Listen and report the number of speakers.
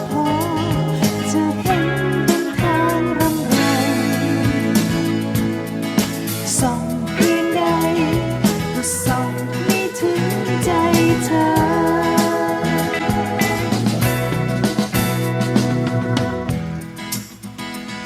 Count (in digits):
1